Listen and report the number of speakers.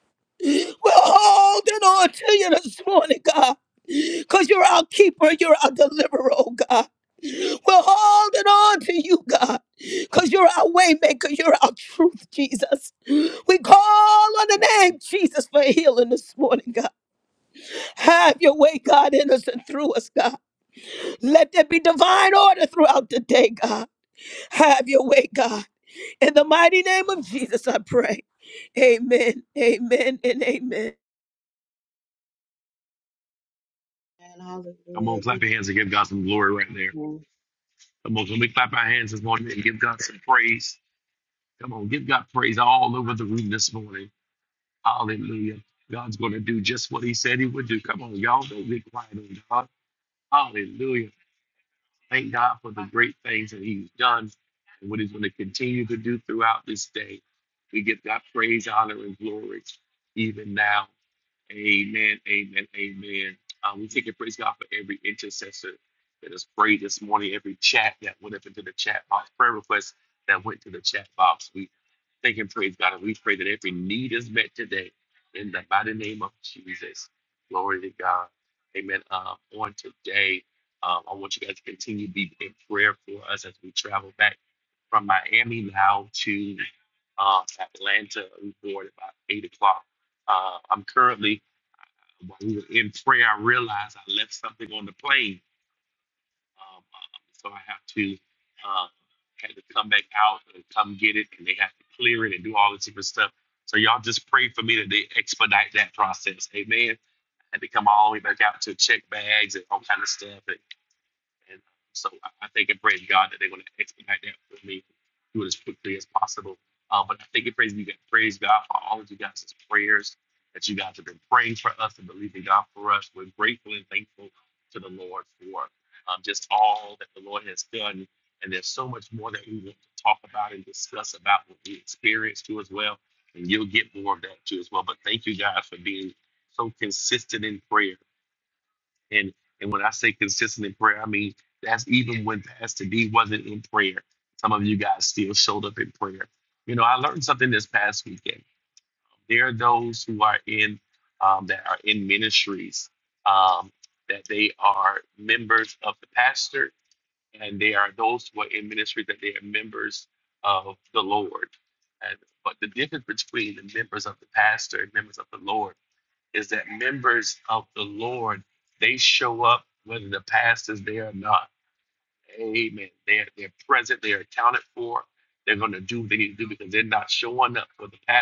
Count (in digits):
3